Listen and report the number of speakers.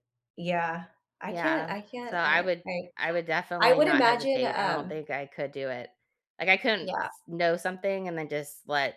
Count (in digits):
2